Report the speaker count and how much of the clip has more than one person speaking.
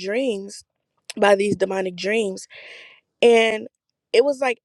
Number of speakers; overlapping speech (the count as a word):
one, no overlap